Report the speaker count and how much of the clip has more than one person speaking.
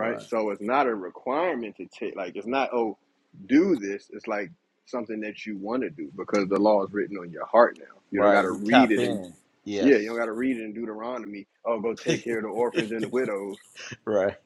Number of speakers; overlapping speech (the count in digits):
2, about 10%